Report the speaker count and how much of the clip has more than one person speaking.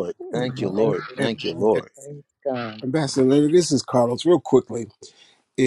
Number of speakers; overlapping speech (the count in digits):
3, about 20%